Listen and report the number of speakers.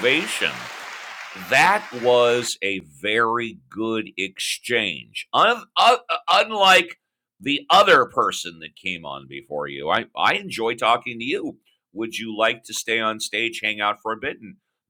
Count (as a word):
one